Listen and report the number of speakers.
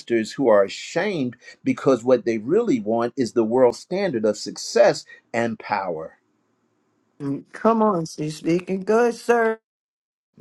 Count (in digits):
2